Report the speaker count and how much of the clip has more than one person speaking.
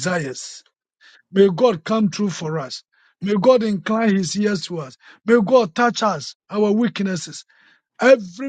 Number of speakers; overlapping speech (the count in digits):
1, no overlap